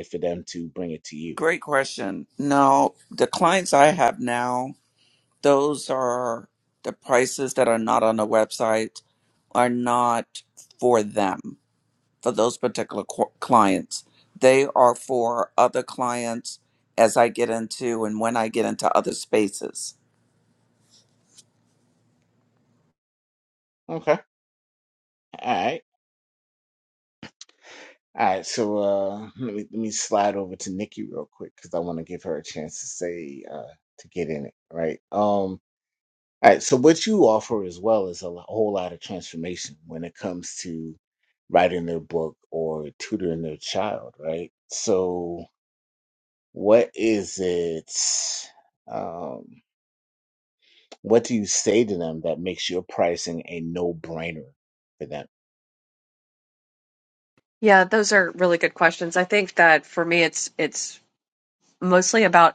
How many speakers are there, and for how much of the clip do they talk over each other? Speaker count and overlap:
three, no overlap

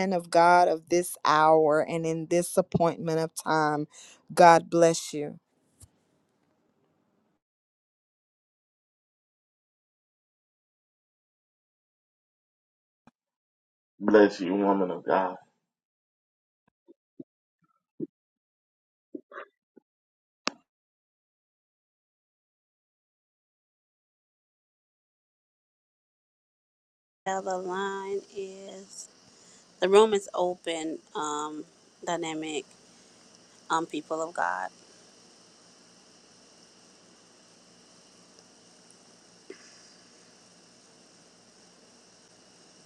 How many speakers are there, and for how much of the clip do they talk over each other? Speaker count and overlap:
three, no overlap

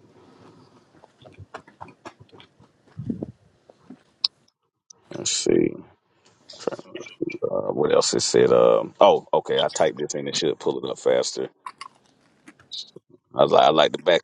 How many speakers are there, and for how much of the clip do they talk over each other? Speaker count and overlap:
one, no overlap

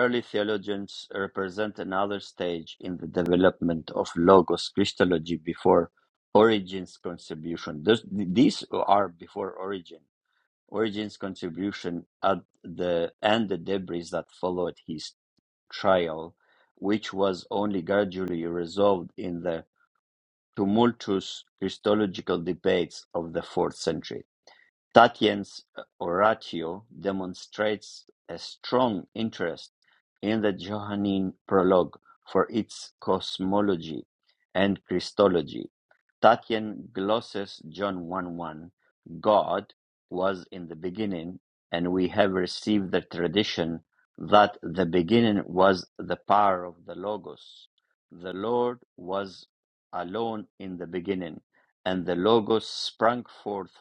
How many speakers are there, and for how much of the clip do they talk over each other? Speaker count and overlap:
one, no overlap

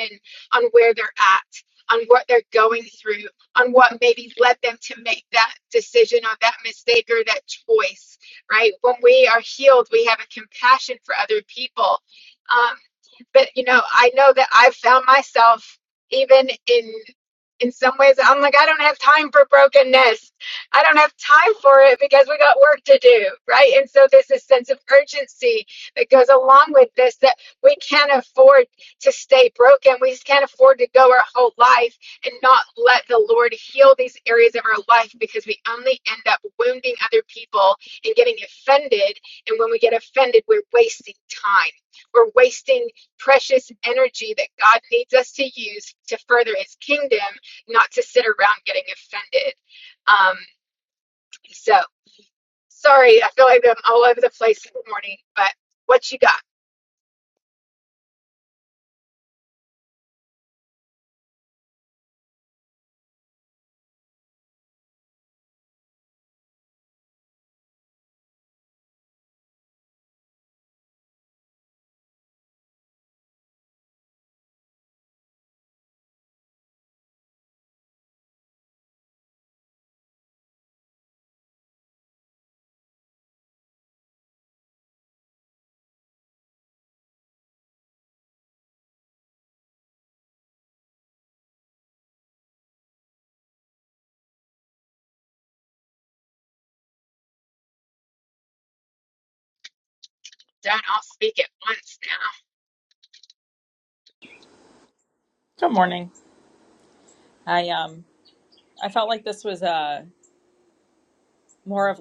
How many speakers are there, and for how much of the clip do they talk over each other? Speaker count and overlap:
two, no overlap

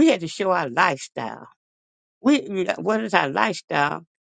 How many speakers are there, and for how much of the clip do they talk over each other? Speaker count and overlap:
one, no overlap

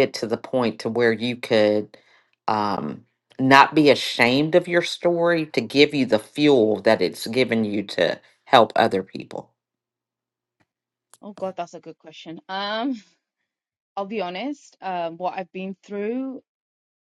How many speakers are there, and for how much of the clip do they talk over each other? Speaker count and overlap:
two, no overlap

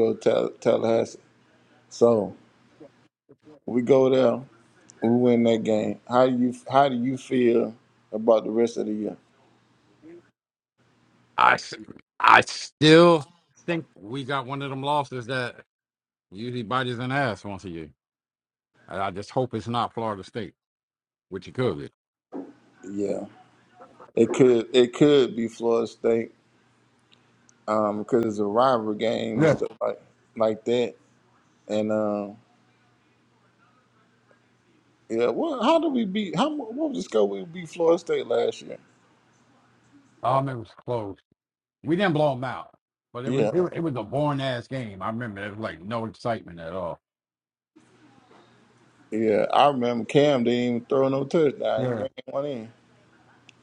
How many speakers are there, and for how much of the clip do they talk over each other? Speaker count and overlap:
two, about 2%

